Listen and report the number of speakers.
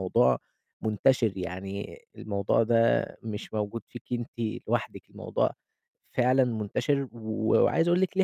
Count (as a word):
one